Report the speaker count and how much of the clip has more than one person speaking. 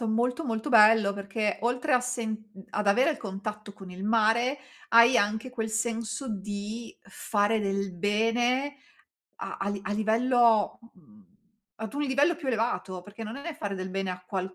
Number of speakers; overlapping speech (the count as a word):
one, no overlap